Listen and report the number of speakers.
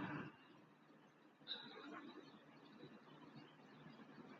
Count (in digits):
0